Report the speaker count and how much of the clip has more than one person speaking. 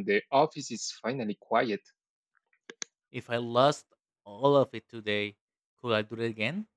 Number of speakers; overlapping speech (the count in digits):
2, no overlap